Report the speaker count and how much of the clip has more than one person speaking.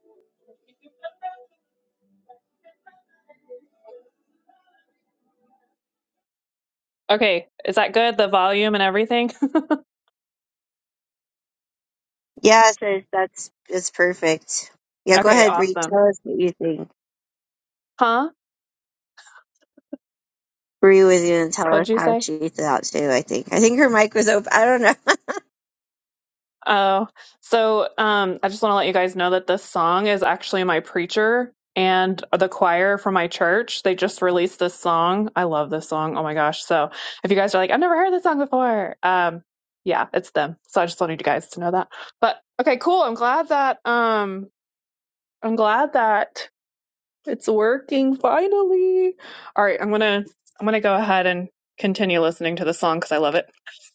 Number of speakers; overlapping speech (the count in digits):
2, about 2%